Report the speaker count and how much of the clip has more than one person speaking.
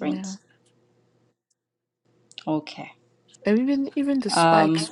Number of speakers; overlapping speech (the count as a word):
two, about 18%